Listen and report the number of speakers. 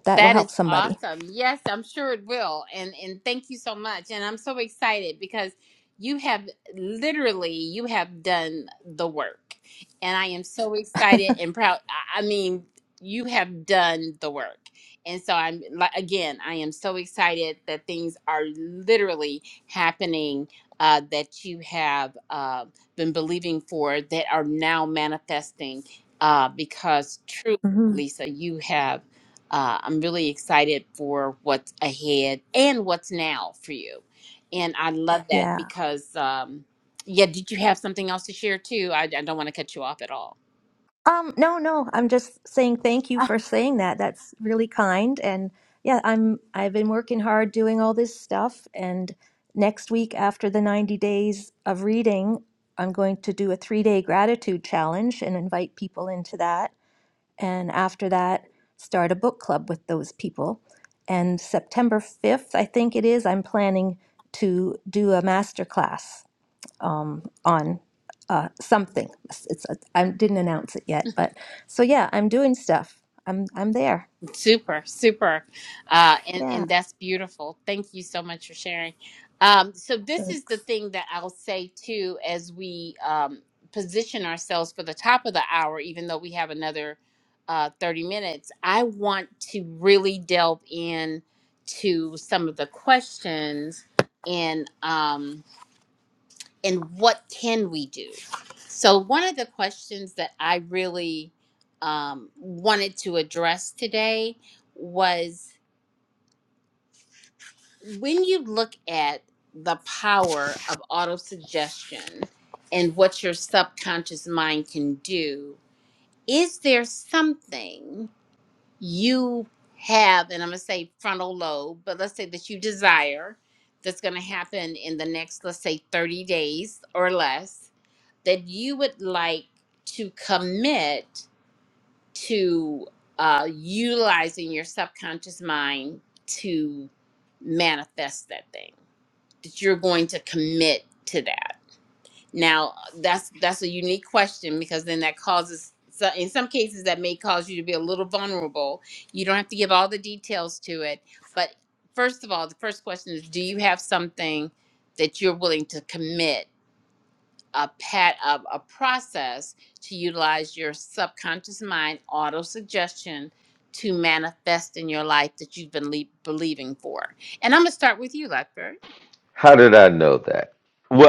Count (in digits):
3